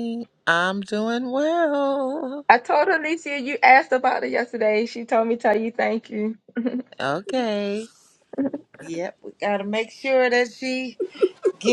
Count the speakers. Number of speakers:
2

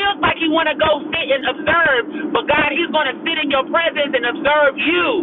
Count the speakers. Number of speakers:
1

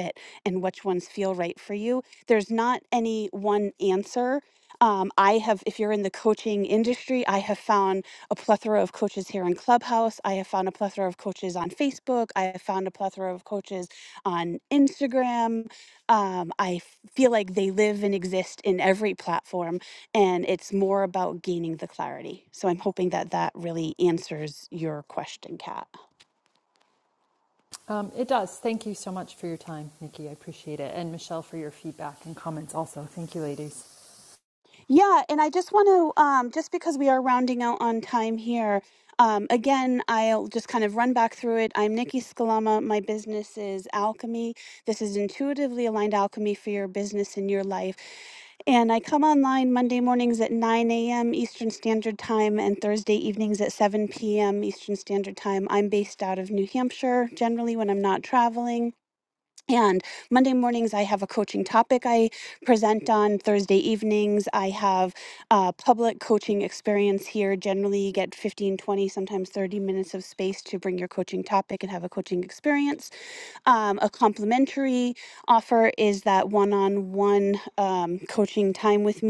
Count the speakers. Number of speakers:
2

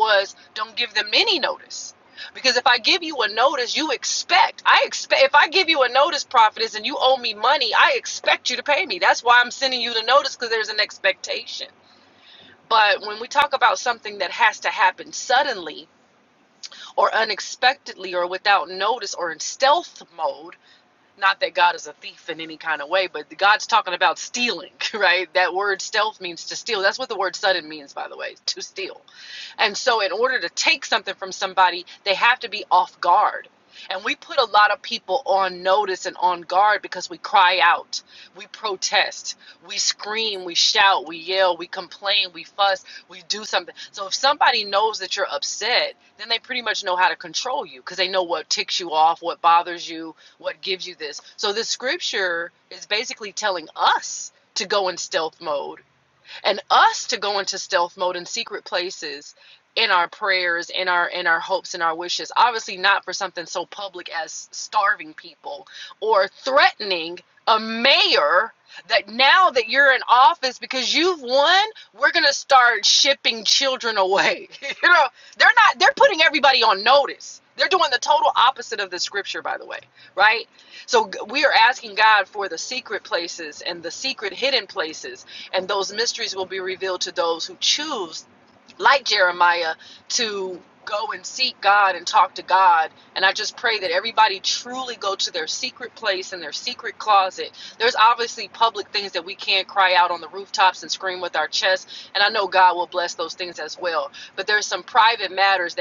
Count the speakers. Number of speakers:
1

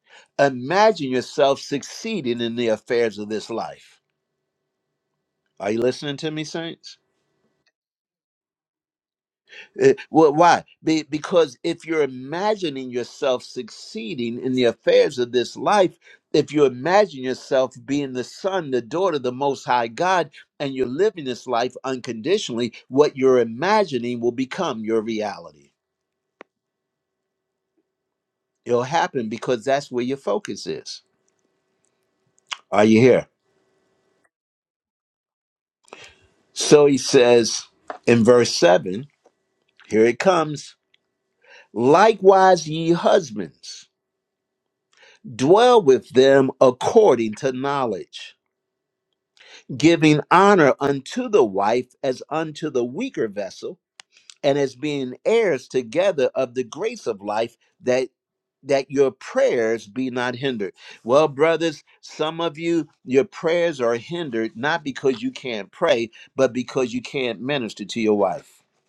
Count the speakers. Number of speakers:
1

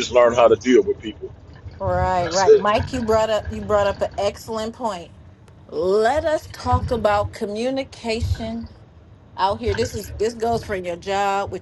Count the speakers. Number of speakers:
2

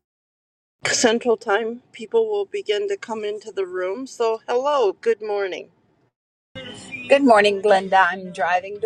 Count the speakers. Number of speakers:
2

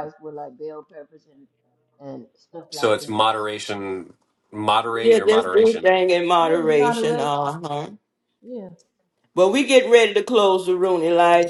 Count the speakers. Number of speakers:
3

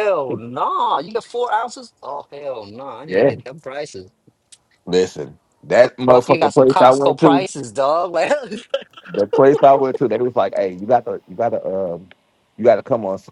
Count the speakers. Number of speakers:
2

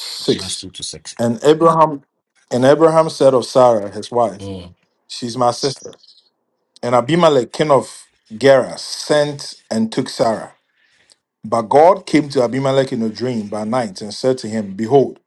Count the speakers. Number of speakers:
2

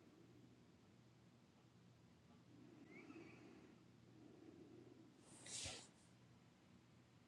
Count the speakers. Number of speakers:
0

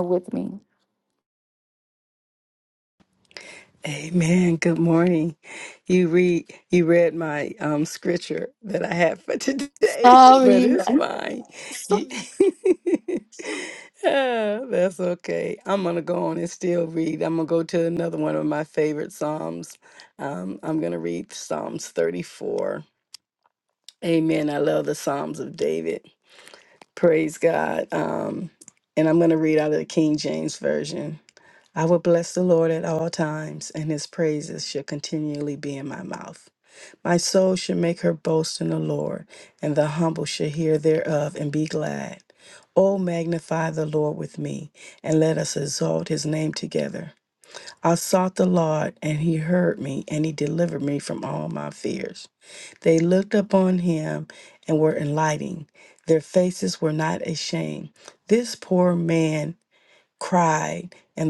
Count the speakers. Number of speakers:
2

